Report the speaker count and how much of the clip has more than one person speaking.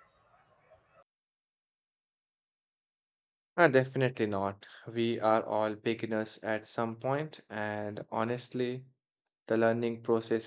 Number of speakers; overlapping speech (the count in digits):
1, no overlap